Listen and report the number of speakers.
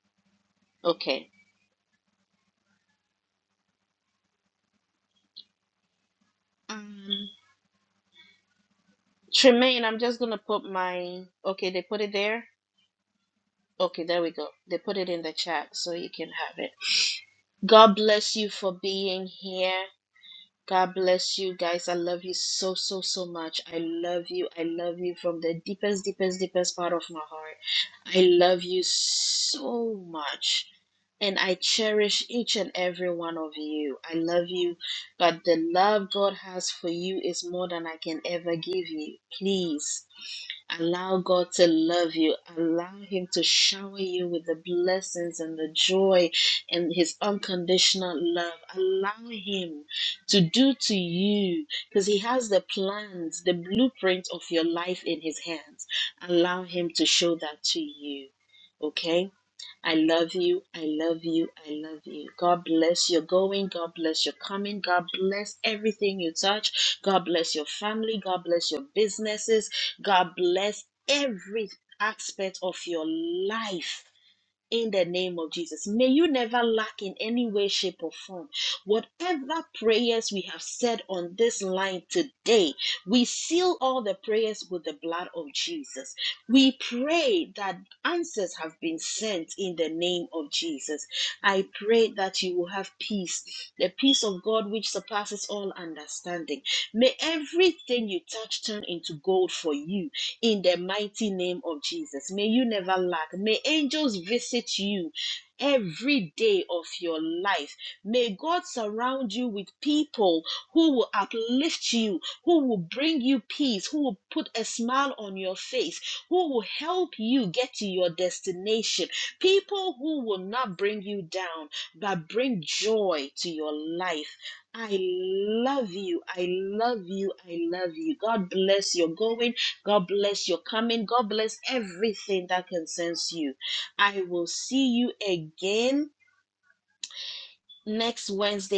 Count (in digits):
1